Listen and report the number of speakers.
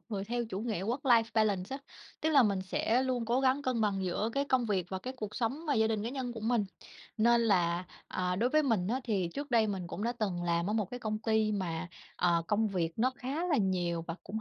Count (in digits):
1